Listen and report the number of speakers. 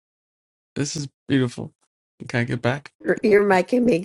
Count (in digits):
2